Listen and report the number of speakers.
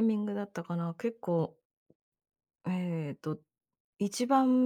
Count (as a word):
one